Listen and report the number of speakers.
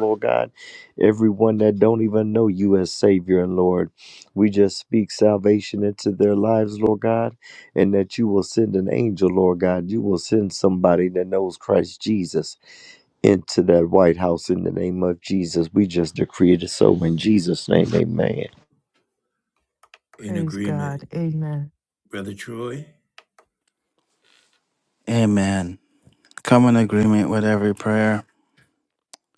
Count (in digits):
4